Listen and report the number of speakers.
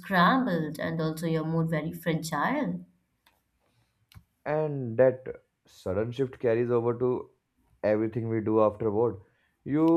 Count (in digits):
2